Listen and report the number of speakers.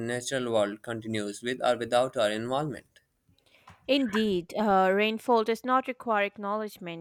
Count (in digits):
2